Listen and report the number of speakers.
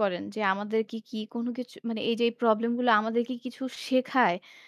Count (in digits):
1